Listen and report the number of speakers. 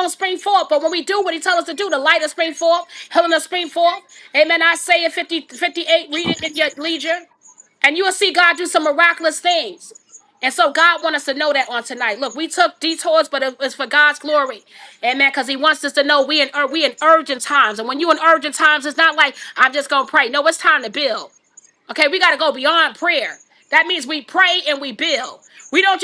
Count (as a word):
one